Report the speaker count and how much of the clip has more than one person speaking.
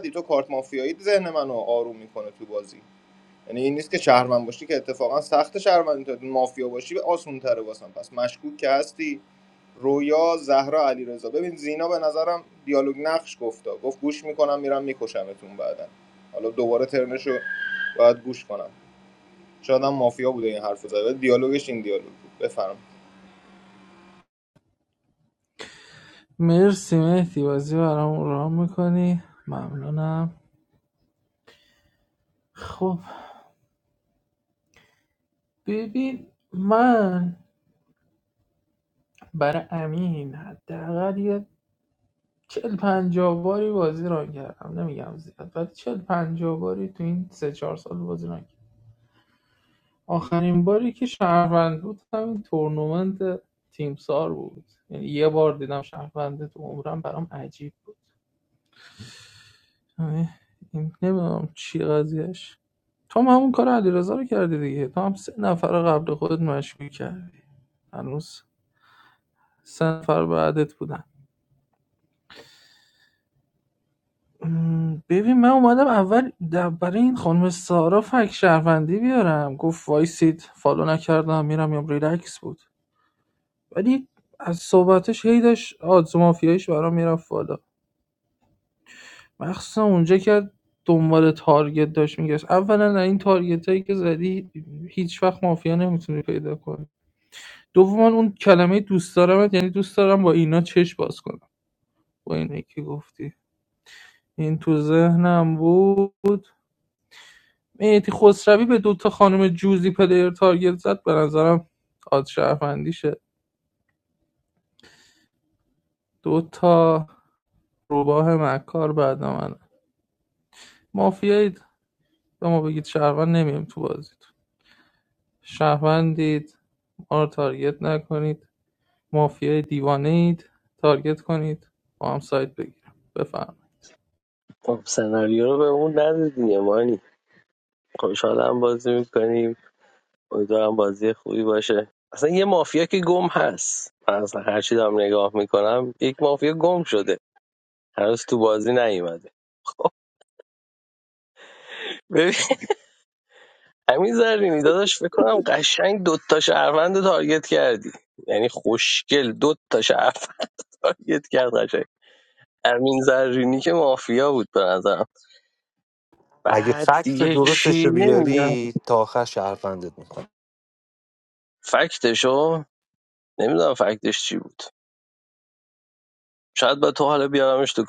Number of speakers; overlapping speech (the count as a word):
four, about 1%